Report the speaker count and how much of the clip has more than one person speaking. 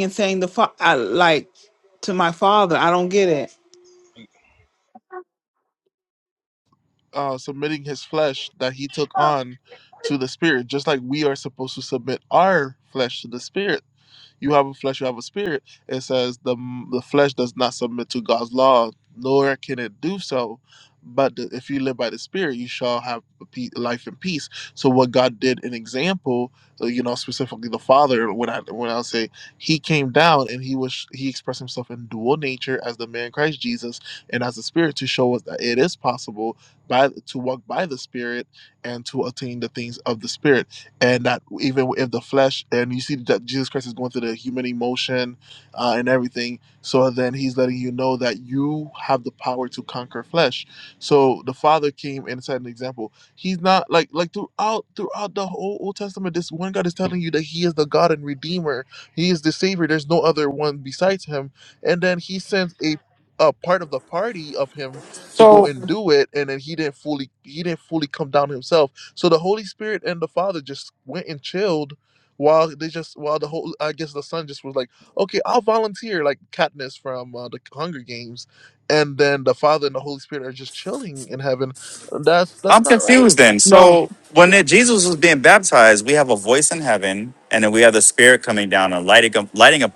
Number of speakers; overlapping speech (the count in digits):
3, about 1%